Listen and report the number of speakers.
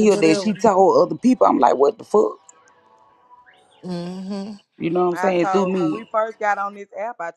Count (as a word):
three